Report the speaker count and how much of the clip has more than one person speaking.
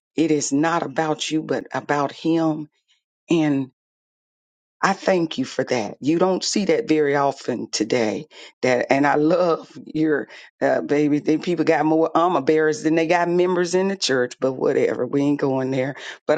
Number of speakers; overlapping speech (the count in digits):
1, no overlap